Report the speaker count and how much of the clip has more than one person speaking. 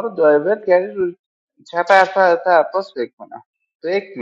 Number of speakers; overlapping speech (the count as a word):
one, no overlap